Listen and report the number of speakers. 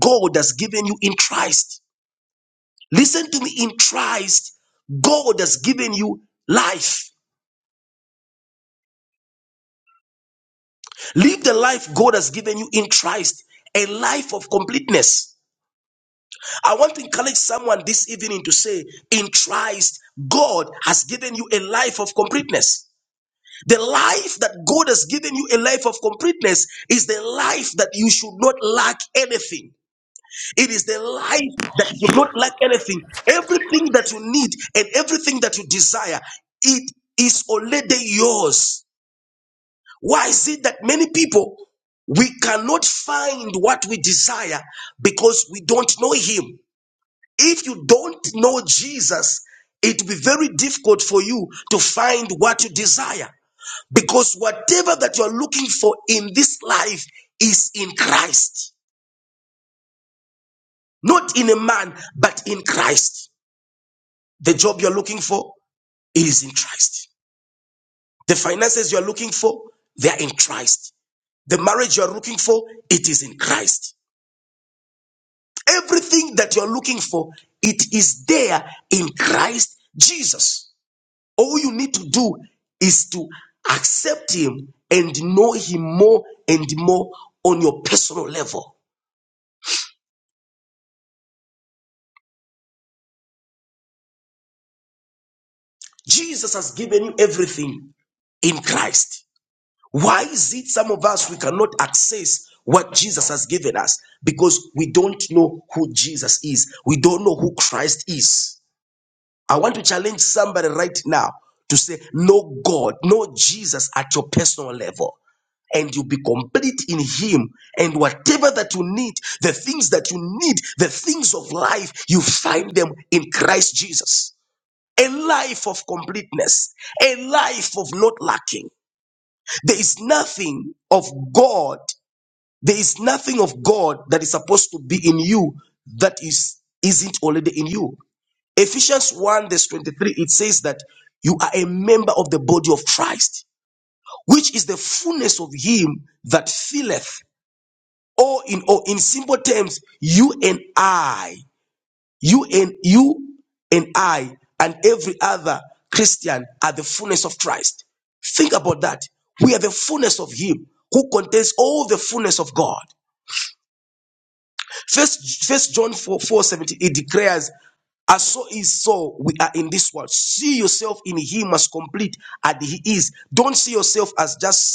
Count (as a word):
one